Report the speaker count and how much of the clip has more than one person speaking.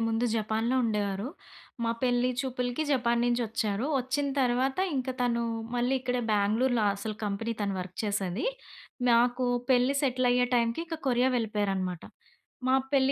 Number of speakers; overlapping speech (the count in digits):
1, no overlap